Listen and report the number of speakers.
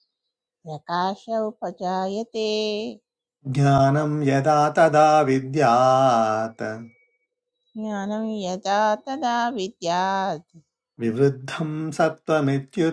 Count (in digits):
2